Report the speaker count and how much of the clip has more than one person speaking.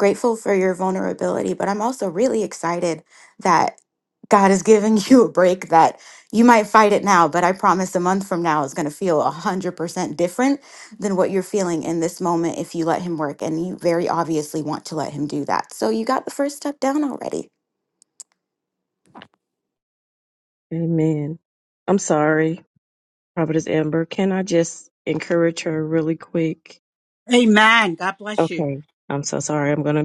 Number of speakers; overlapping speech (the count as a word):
three, about 1%